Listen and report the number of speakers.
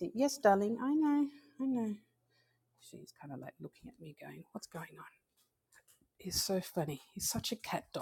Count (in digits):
1